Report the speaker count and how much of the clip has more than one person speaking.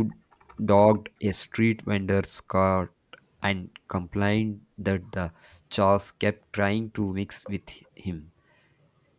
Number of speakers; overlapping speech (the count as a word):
one, no overlap